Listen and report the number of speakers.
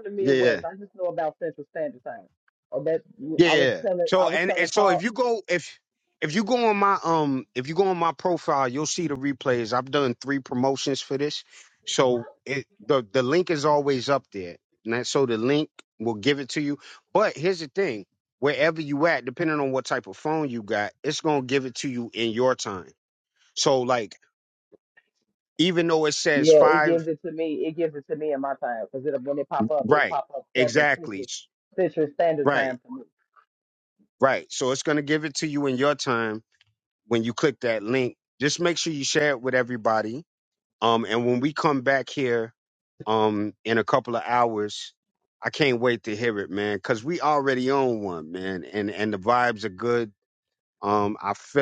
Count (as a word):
two